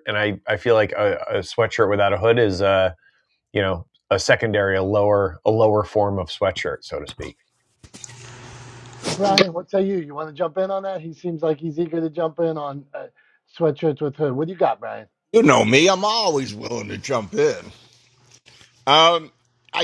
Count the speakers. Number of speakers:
three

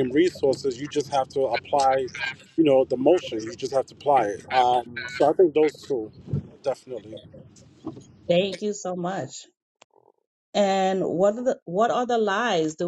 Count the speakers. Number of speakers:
two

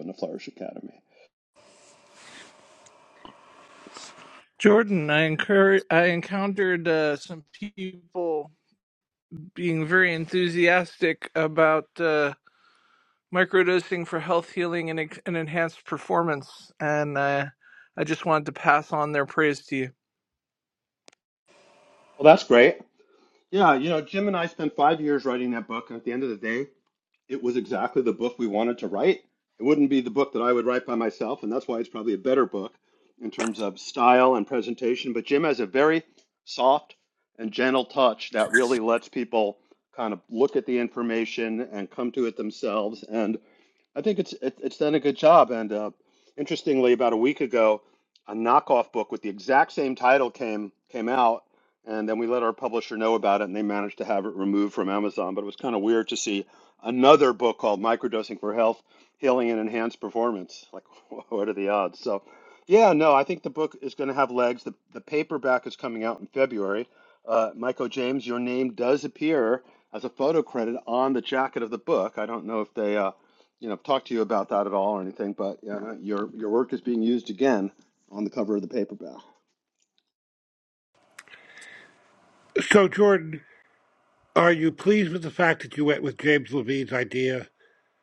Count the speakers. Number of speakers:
three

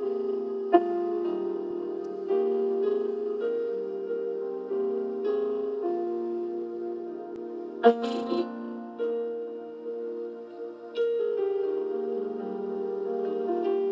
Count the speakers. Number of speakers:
zero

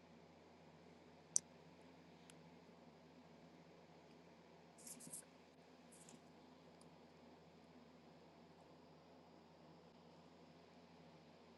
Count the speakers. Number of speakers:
zero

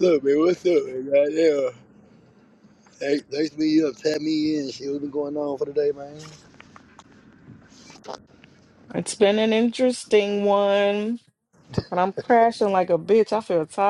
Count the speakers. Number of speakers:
two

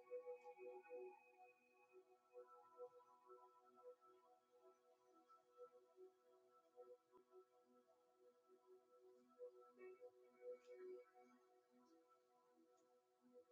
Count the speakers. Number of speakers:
zero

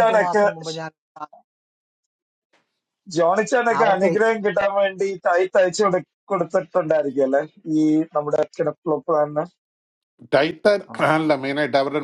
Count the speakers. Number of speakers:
three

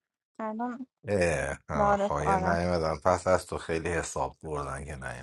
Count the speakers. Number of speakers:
two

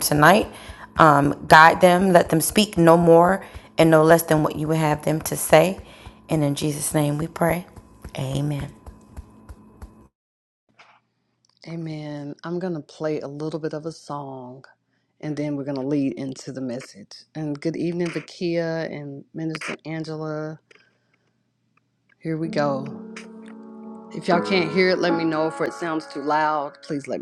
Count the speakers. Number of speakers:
two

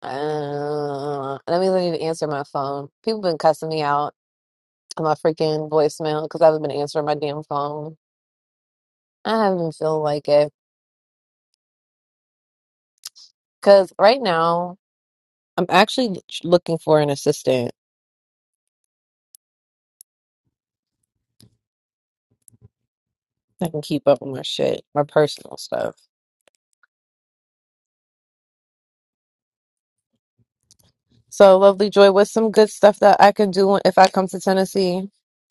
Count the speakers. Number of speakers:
one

